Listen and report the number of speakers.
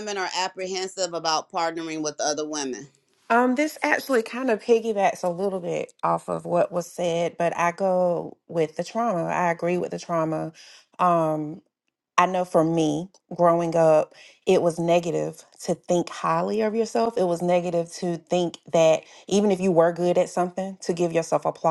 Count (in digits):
2